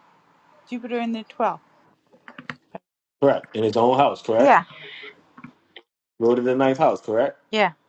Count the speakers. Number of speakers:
2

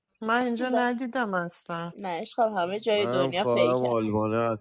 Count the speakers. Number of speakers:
3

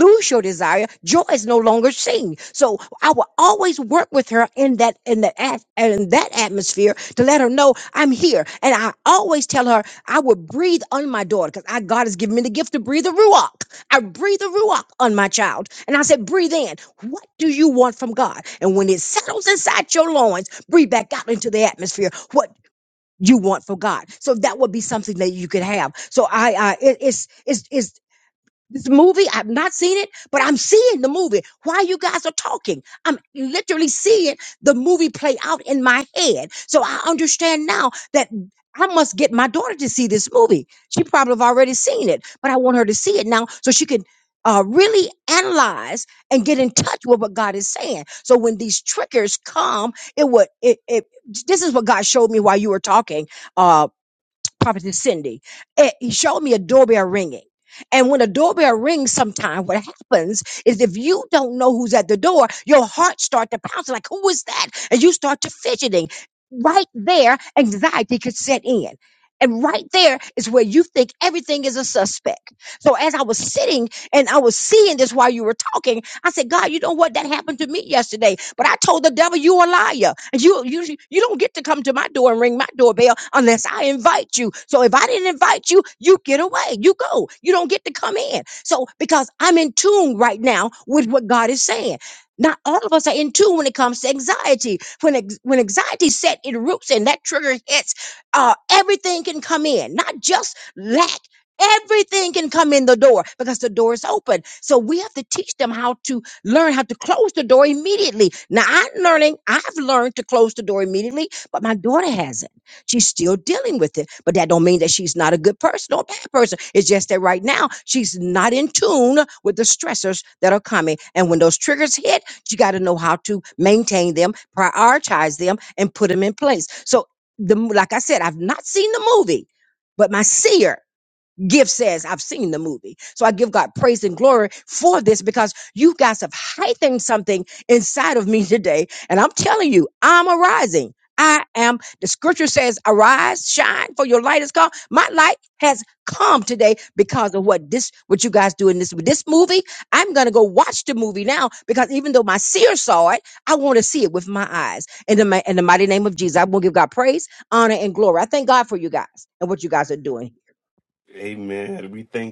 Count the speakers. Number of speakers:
2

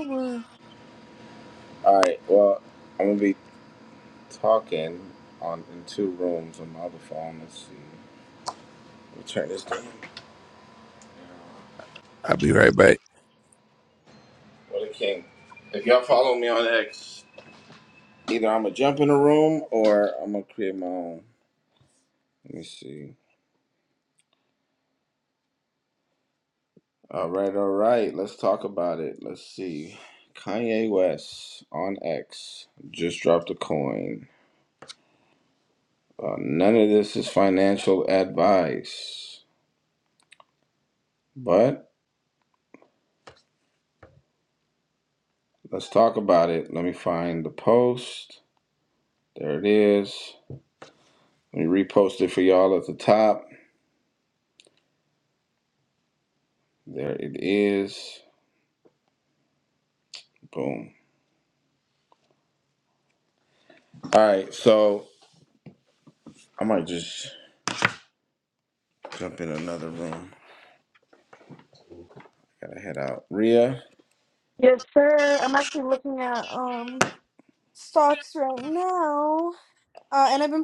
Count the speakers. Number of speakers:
3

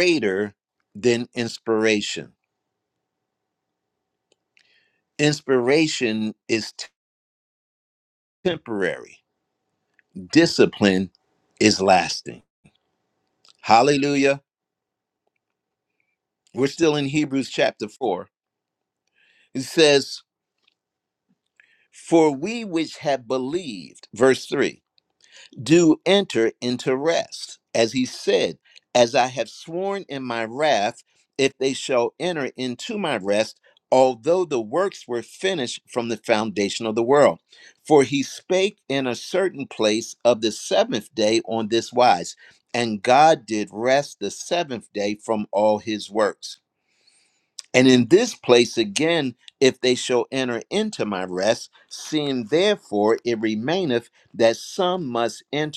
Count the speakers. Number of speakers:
1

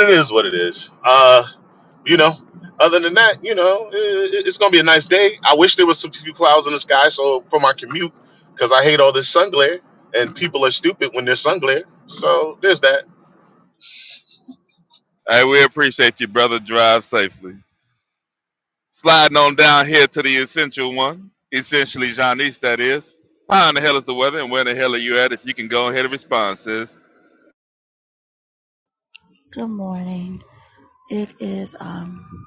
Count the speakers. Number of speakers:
3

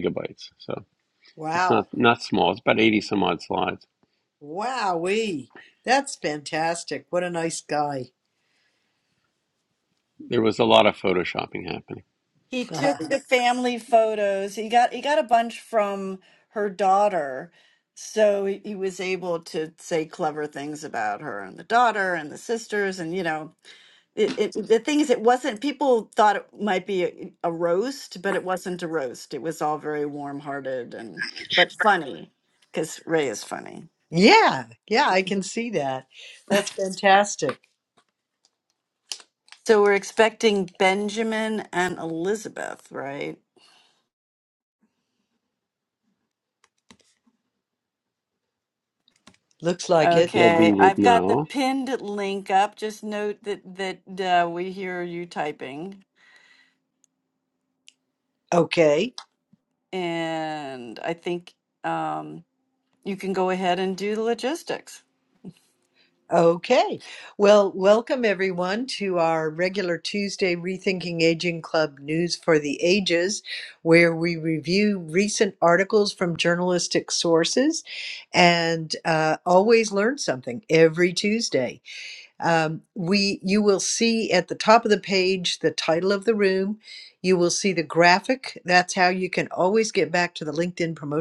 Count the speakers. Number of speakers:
3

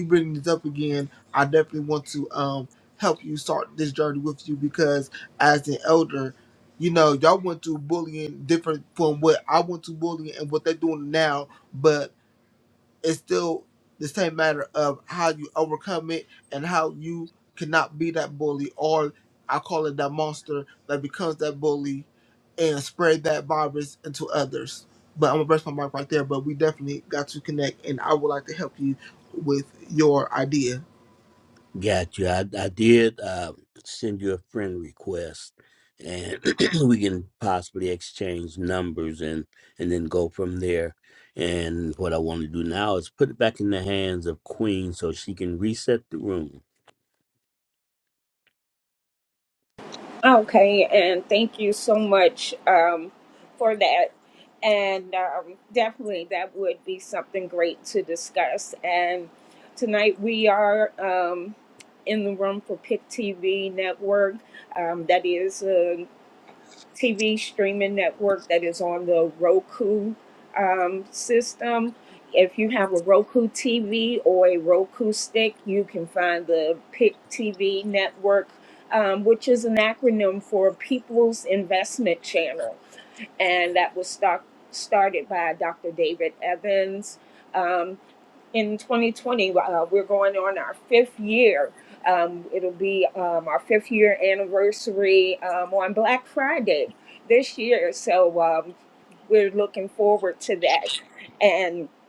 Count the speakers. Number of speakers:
3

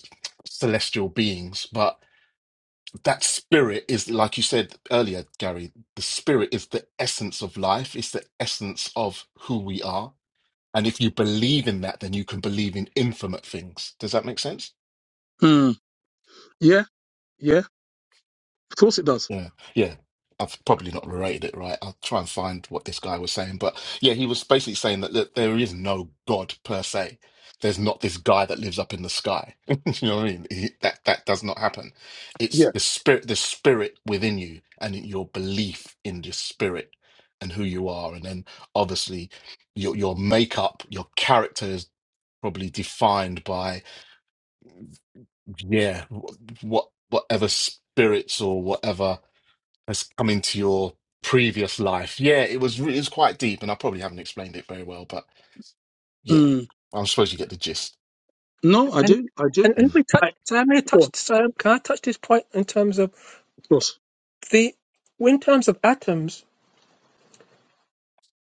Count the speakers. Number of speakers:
3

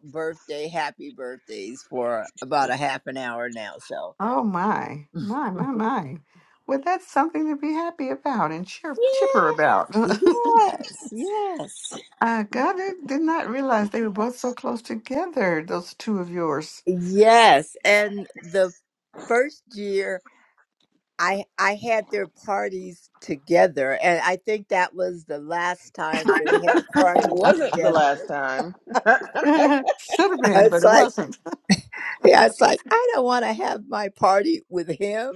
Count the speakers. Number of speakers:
3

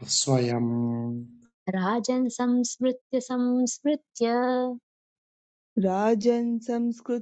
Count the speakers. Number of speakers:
3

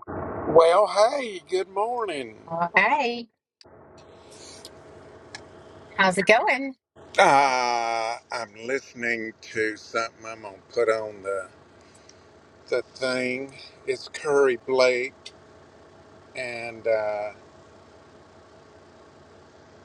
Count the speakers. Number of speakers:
2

